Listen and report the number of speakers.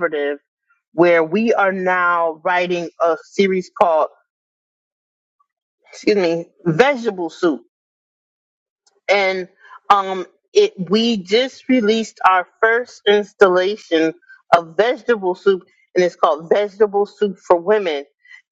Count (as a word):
one